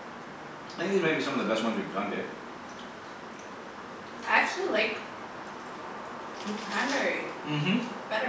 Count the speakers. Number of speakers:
2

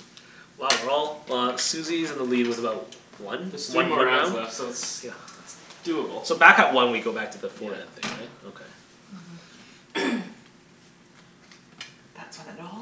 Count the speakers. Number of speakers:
2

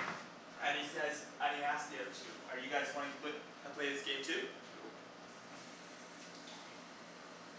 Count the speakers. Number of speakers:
1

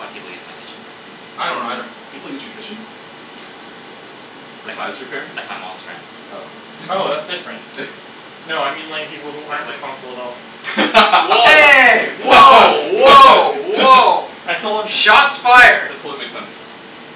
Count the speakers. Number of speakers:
4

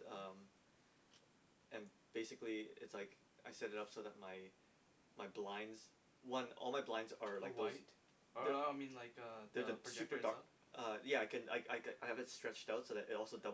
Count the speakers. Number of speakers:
2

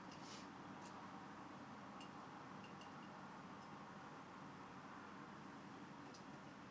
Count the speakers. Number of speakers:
0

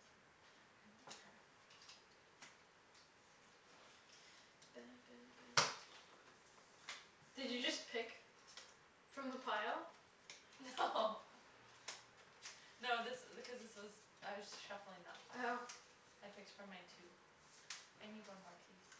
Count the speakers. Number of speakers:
2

